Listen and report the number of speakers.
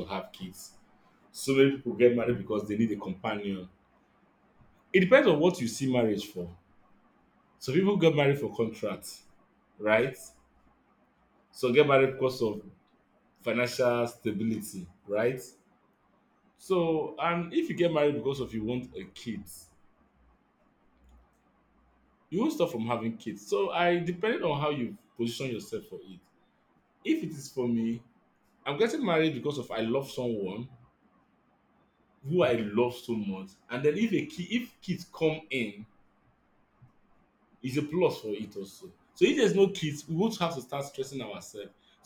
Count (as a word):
one